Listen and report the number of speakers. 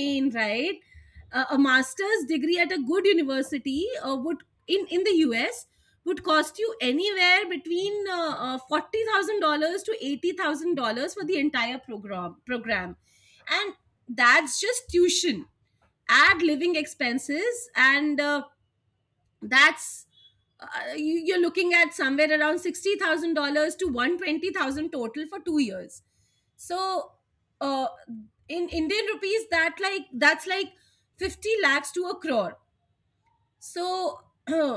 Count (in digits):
1